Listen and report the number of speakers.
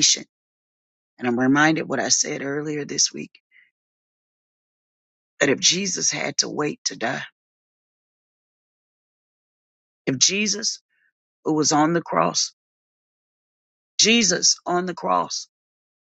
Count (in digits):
1